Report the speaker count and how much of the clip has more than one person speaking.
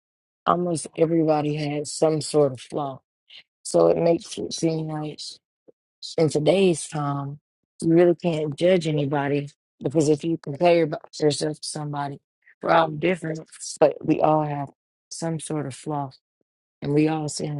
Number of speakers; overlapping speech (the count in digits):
1, no overlap